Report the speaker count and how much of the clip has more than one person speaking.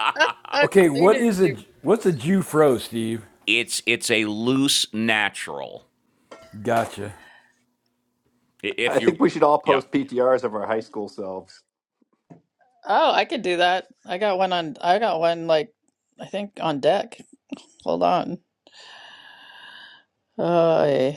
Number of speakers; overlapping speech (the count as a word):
four, about 7%